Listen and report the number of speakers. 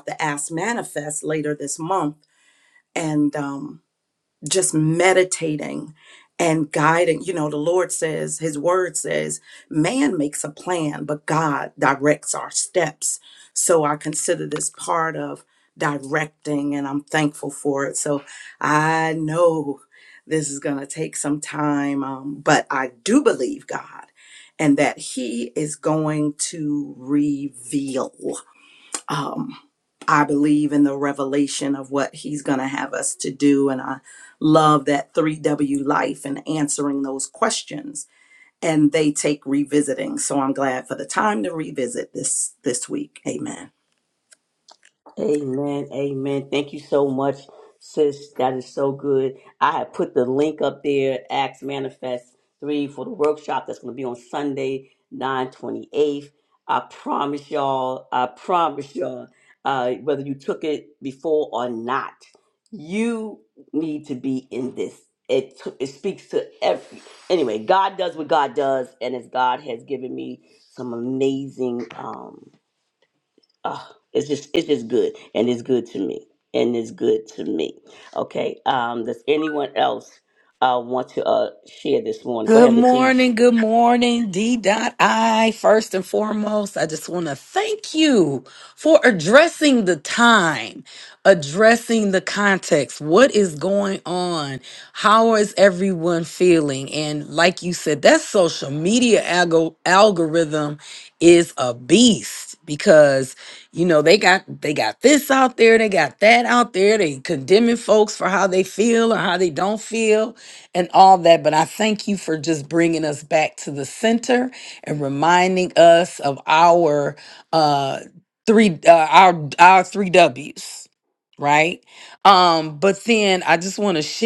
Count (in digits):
3